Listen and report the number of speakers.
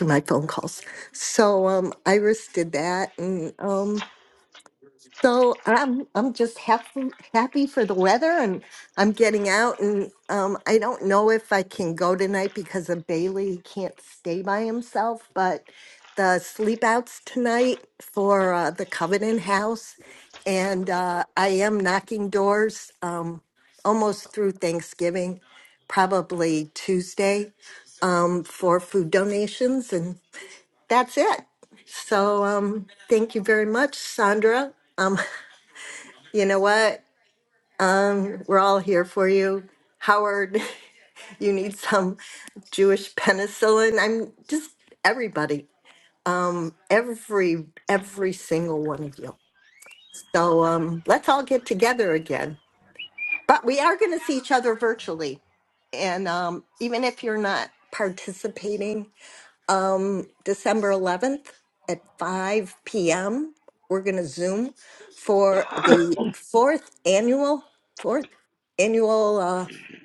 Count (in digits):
1